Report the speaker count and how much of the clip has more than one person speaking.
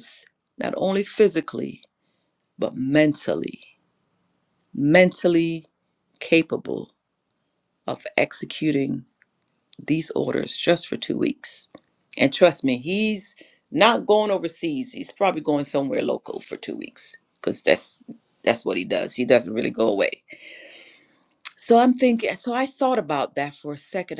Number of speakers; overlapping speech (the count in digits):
1, no overlap